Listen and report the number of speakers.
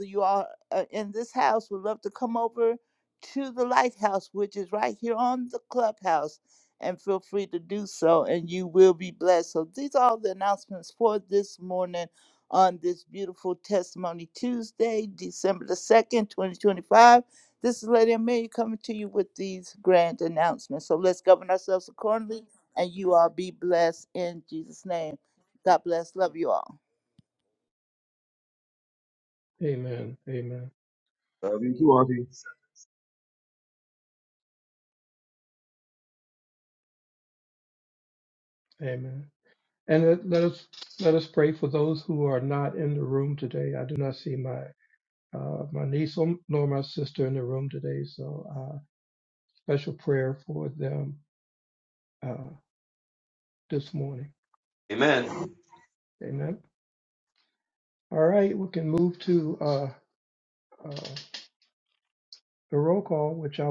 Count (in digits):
3